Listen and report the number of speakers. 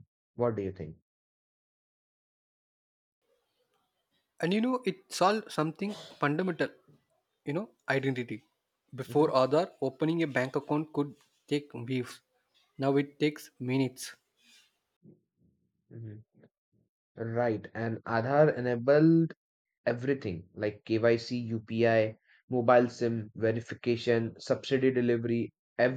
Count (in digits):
2